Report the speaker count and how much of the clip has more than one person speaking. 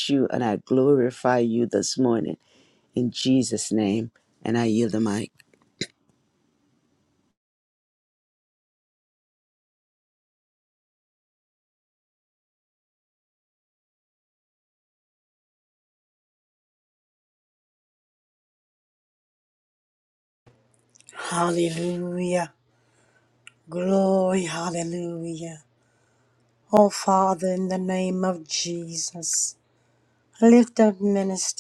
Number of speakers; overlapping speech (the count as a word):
two, no overlap